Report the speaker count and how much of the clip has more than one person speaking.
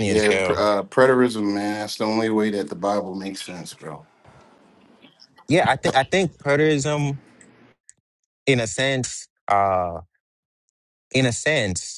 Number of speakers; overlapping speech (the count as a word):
two, about 5%